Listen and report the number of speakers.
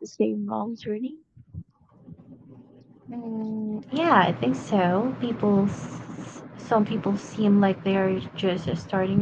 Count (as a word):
two